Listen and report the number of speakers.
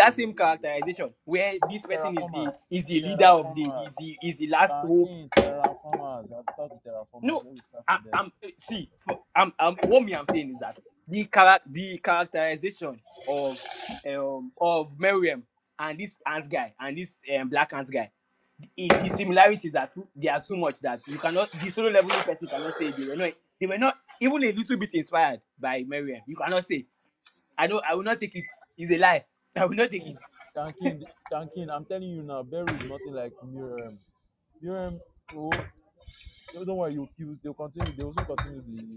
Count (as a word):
two